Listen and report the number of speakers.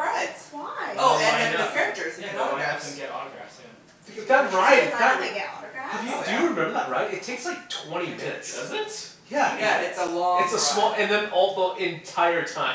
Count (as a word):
four